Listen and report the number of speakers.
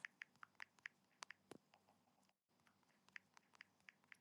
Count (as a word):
zero